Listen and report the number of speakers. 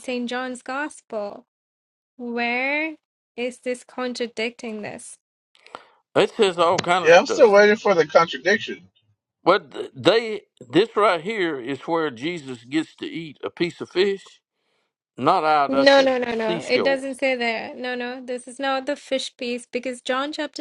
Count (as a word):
three